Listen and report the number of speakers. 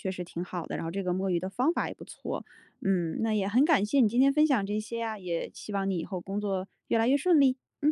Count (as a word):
one